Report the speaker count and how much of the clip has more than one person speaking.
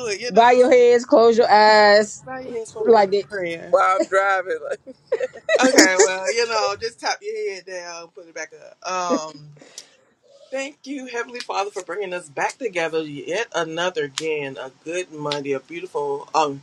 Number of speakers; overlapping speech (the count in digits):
3, about 5%